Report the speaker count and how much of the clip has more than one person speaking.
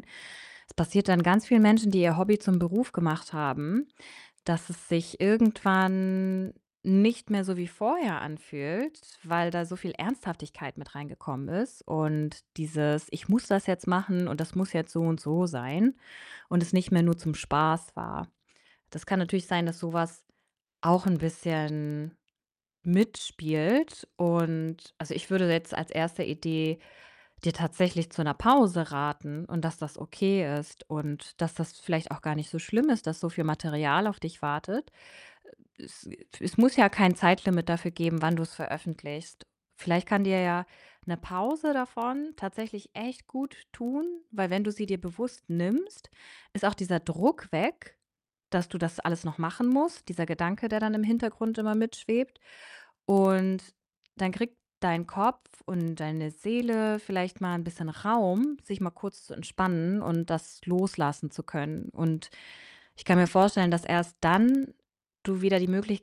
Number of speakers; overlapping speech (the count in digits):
1, no overlap